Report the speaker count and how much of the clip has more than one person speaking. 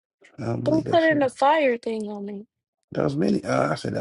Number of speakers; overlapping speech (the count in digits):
2, about 14%